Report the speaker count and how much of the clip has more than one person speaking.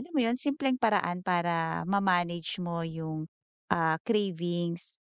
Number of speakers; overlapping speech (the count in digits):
1, no overlap